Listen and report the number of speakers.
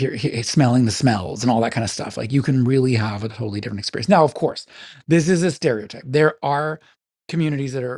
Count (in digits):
1